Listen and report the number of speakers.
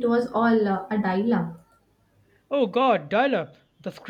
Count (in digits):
2